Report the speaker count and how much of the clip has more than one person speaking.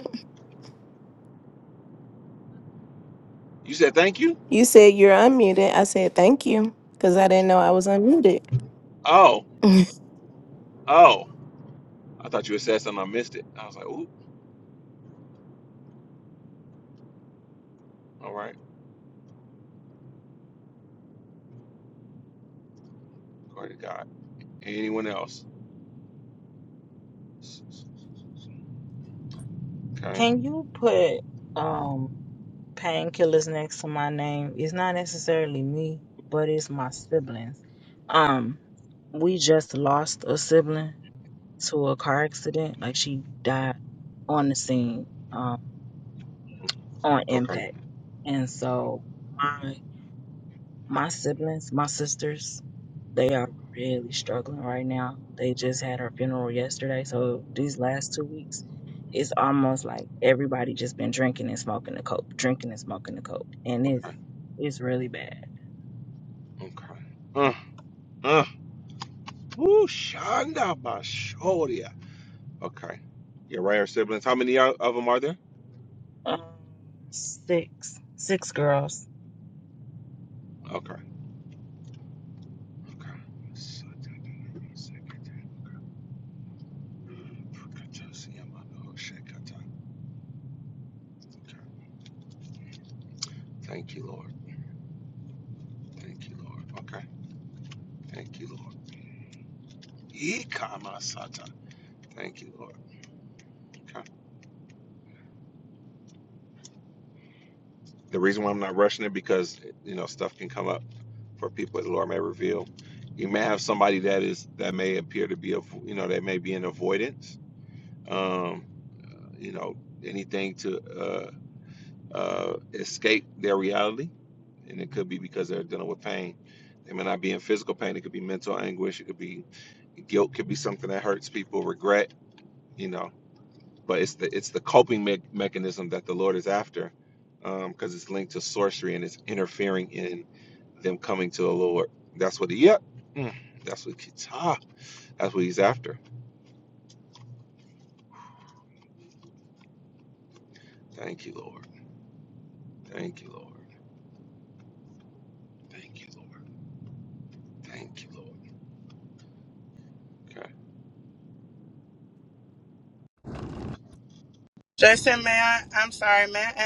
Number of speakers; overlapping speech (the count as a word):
four, under 1%